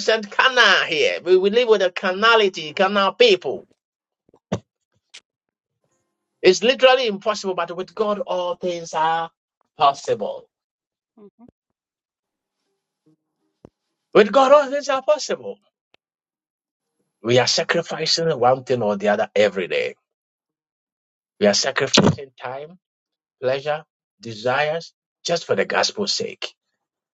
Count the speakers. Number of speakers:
1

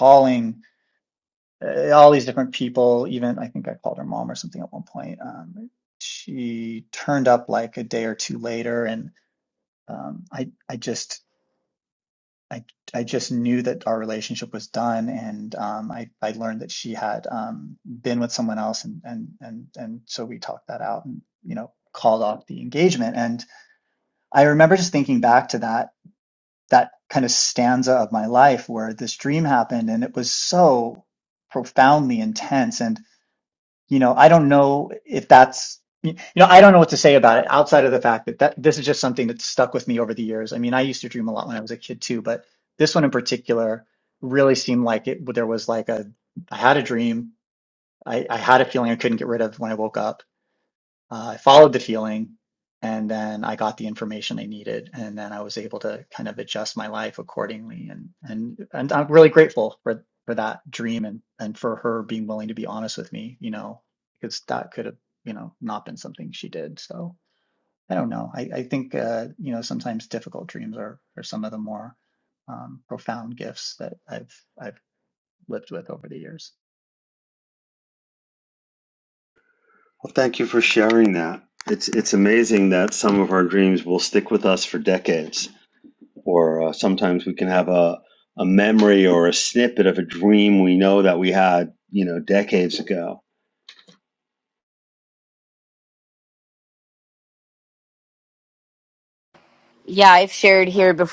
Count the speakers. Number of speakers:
3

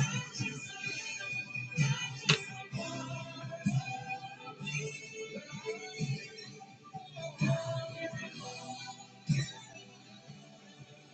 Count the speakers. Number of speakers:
0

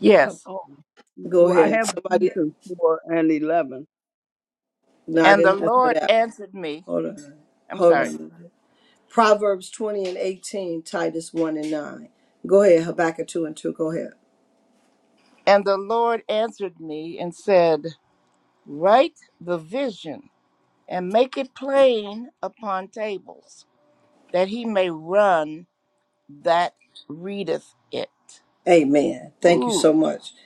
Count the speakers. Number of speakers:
3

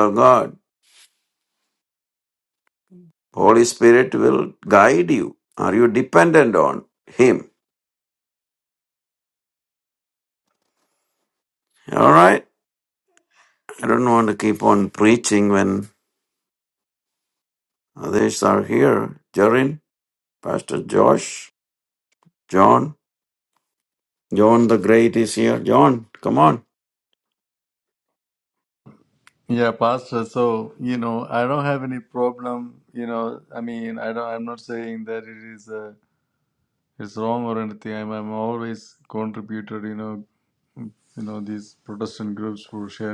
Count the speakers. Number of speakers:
2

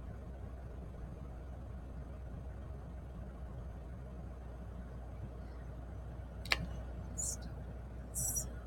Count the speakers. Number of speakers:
0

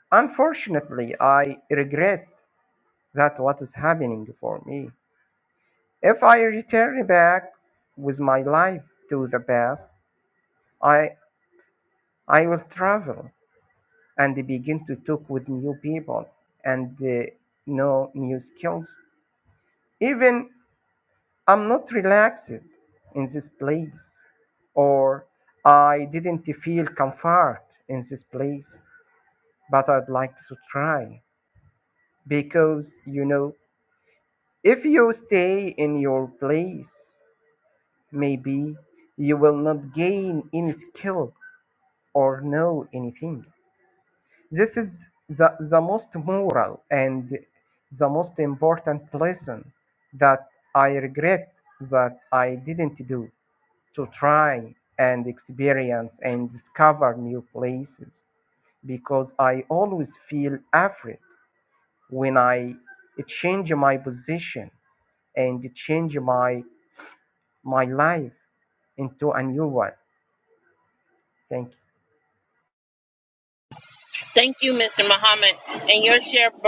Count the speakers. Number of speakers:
2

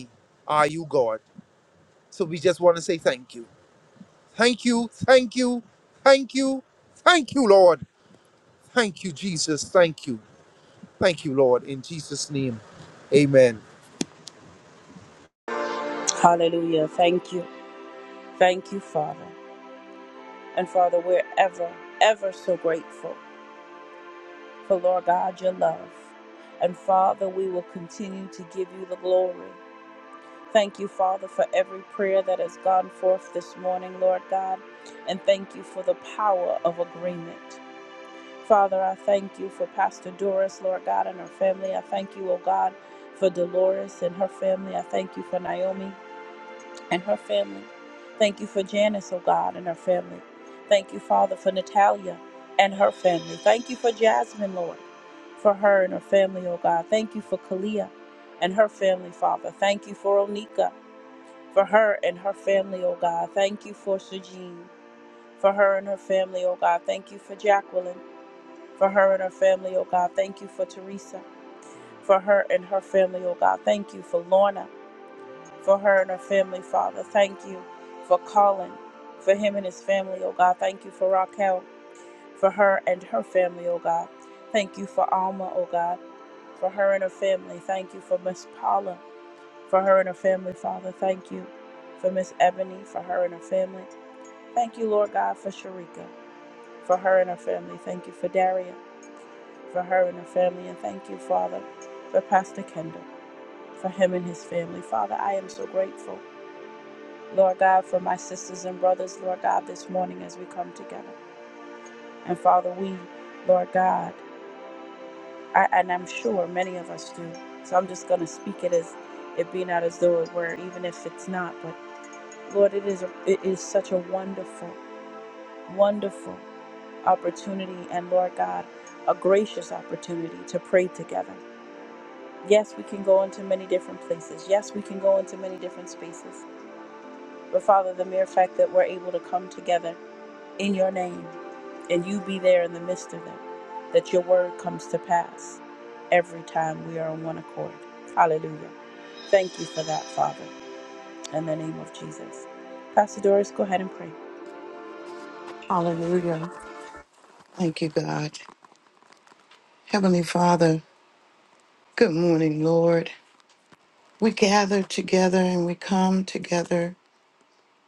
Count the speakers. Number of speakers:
3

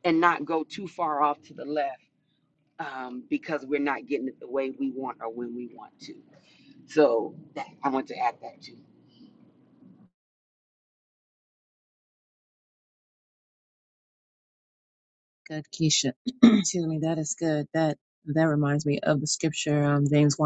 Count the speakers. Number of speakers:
2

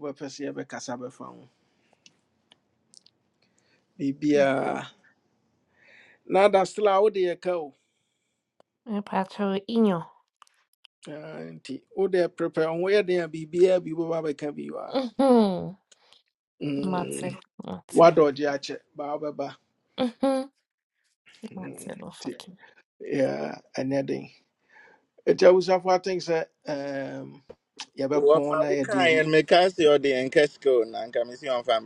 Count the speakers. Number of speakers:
3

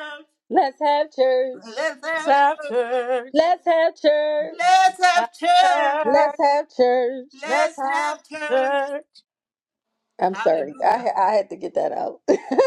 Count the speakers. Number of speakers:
3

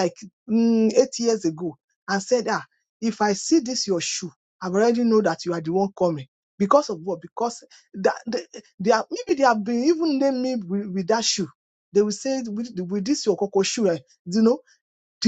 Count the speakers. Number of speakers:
1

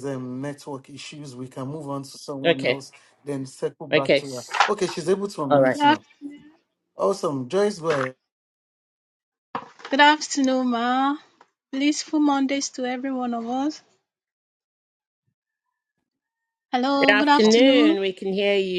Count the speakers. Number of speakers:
3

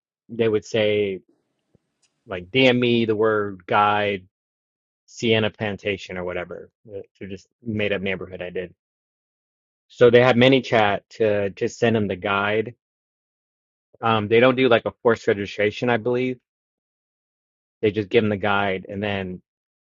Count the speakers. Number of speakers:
1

